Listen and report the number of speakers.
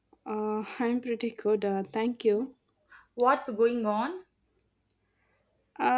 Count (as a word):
two